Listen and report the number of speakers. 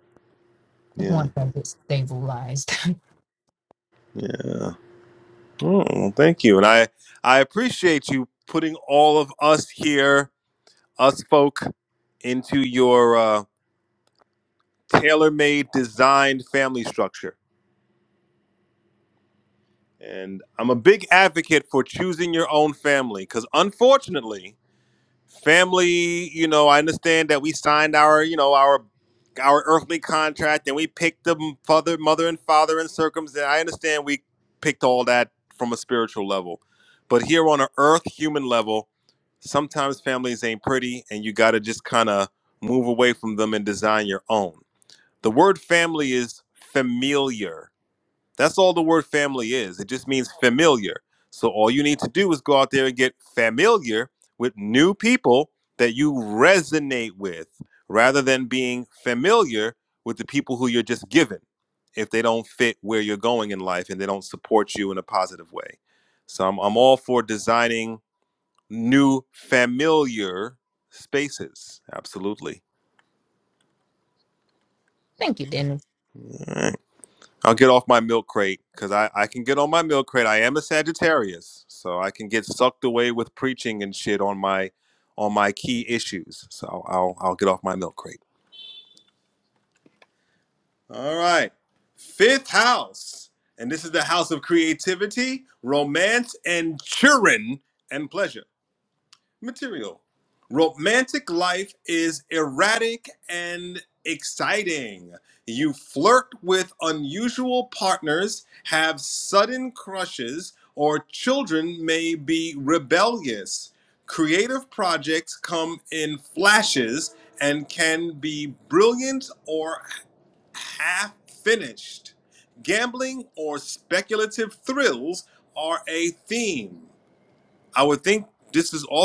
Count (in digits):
2